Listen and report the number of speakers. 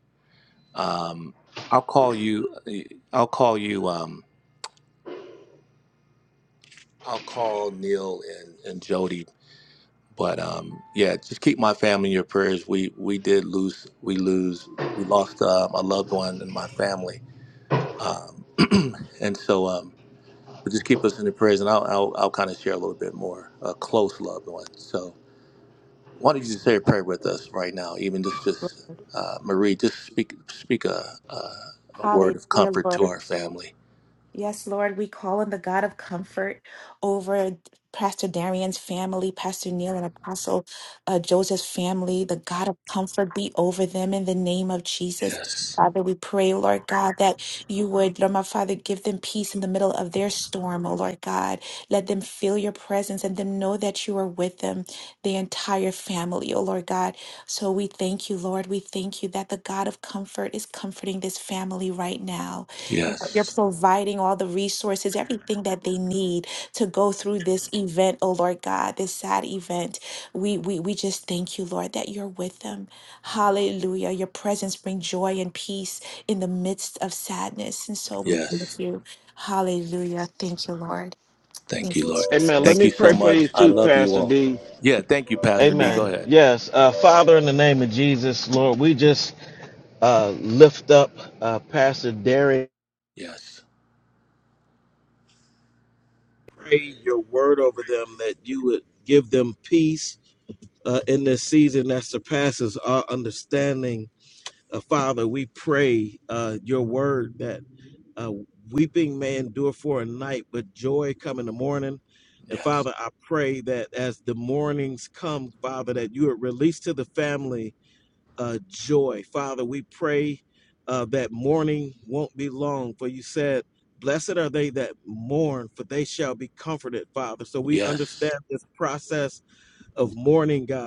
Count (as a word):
three